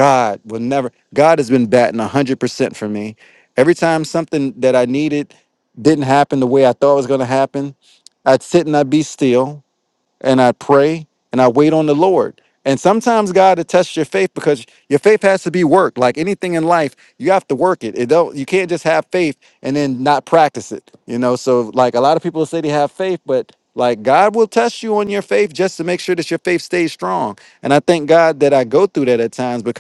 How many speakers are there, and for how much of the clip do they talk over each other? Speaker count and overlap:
one, no overlap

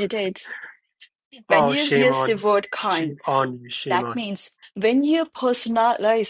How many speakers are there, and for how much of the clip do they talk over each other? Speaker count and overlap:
two, about 22%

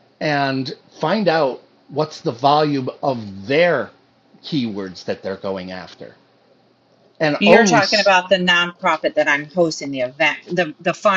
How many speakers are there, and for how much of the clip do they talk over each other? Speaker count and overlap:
two, about 6%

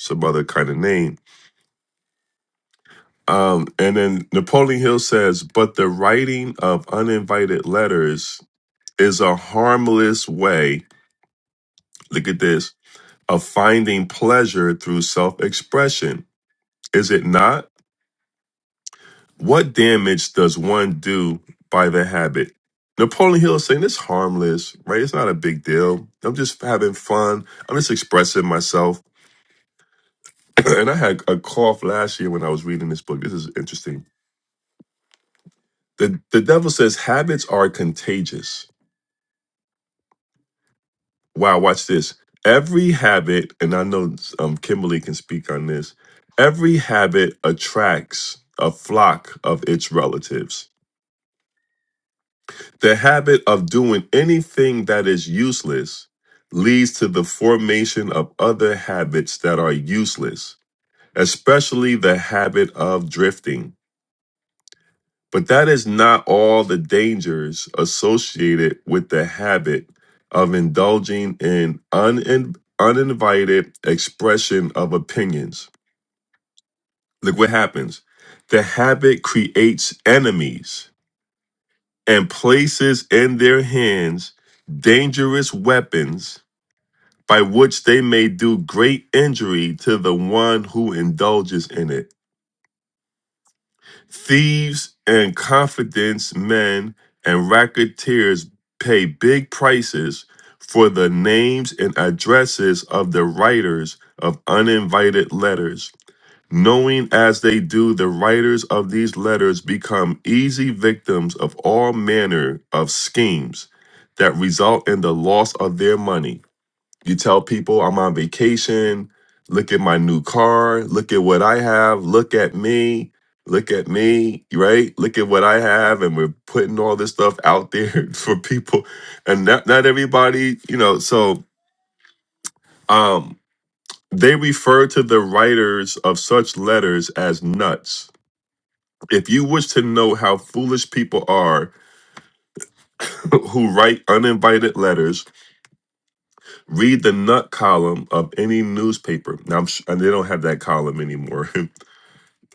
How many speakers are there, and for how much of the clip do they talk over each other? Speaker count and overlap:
one, no overlap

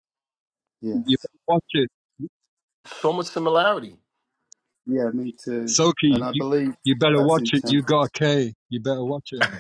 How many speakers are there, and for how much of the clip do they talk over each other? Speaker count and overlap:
three, about 13%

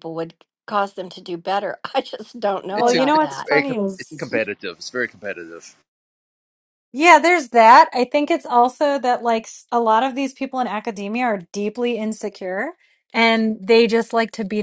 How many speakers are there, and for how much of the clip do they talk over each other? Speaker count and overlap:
three, about 8%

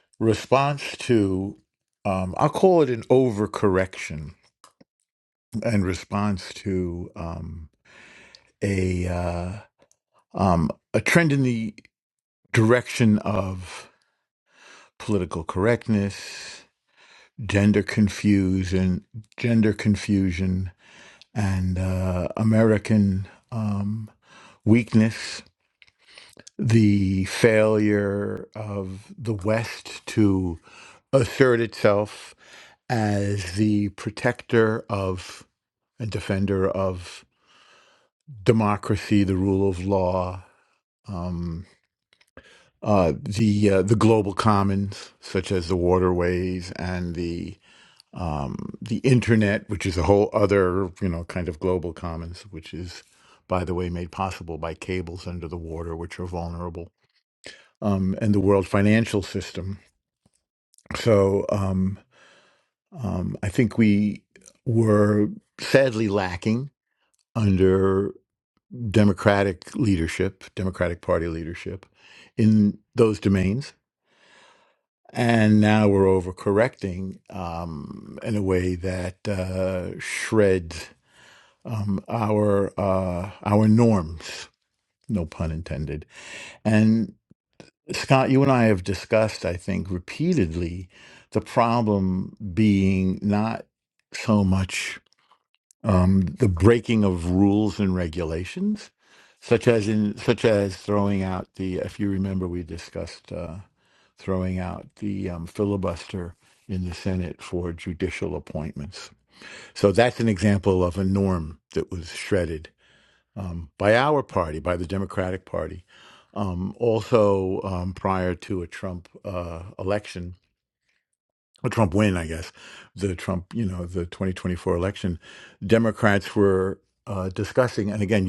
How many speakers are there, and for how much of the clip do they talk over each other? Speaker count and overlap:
one, no overlap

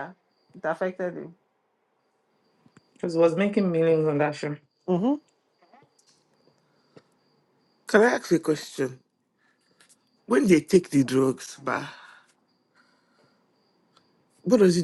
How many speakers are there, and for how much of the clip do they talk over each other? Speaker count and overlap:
three, no overlap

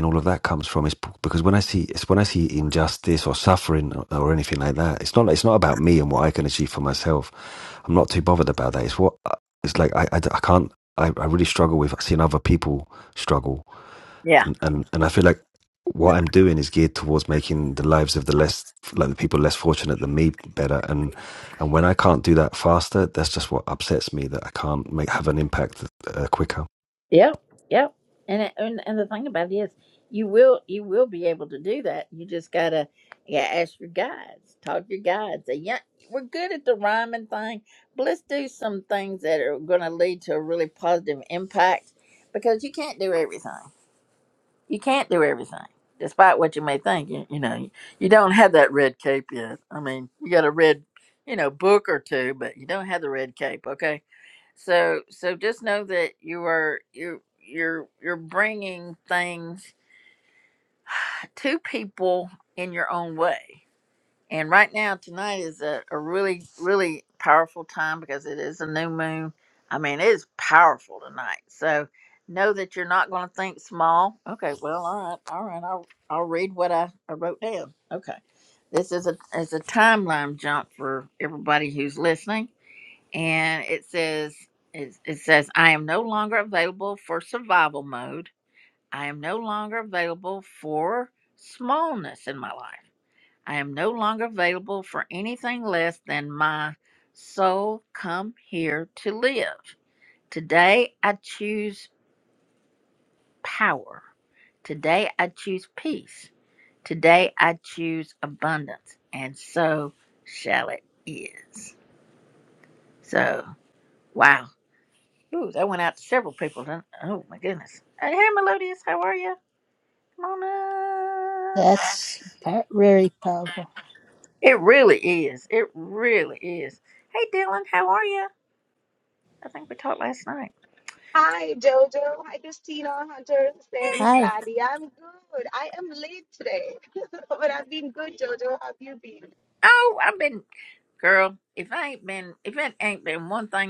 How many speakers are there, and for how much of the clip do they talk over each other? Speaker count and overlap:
four, under 1%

